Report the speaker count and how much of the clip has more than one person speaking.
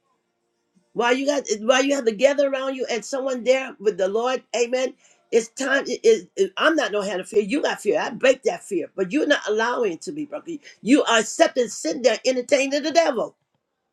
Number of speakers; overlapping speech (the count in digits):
1, no overlap